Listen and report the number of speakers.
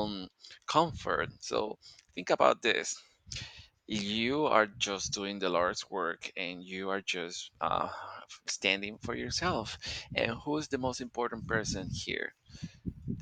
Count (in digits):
1